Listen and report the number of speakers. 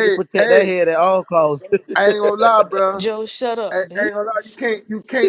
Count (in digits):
3